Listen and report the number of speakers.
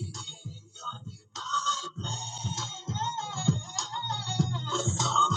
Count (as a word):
zero